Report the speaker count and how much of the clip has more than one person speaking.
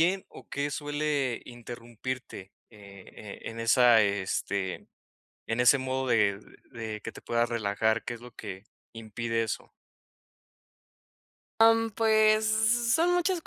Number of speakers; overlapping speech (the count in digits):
2, no overlap